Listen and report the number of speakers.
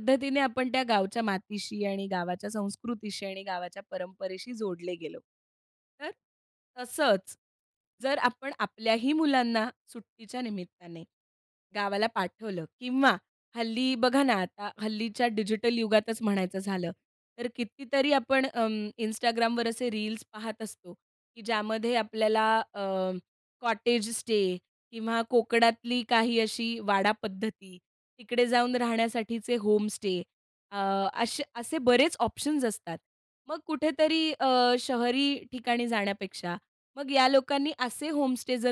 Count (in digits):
1